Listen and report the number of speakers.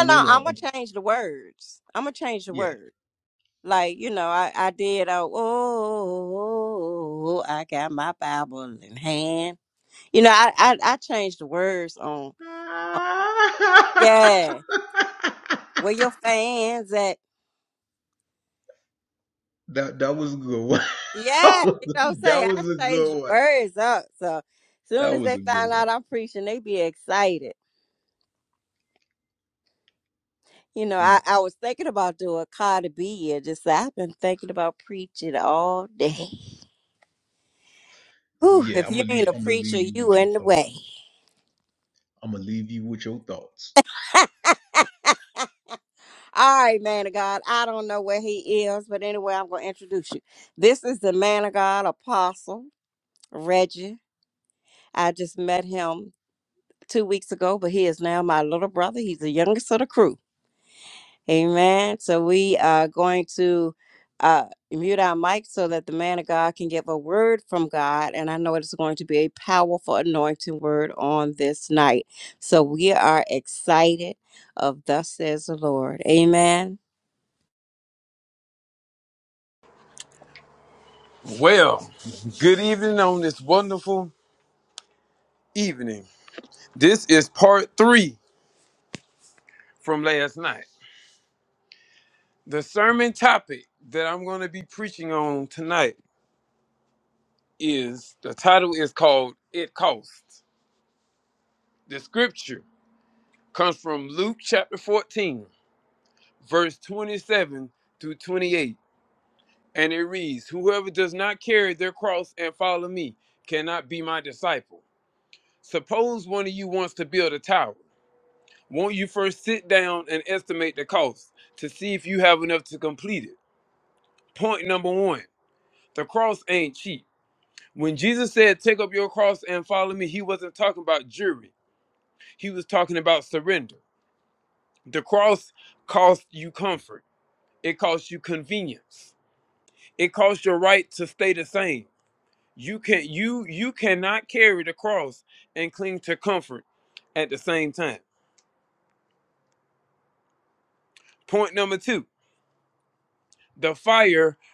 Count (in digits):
3